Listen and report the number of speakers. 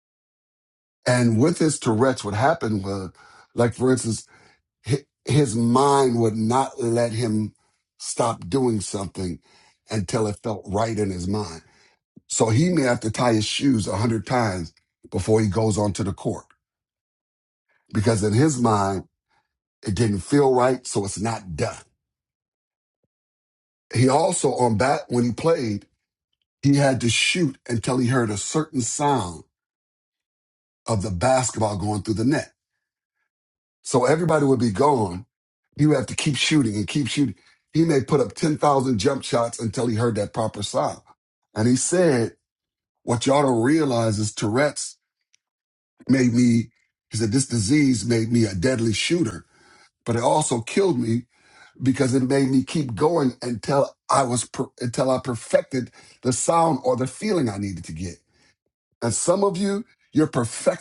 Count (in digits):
1